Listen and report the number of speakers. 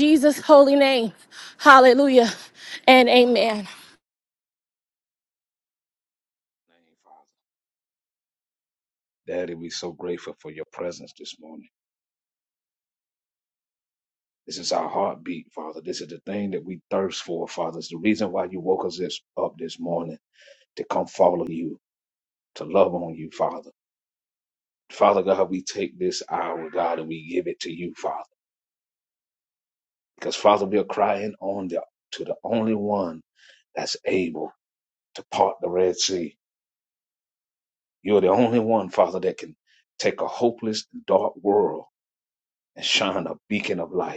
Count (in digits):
2